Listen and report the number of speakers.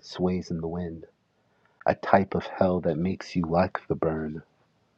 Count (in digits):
1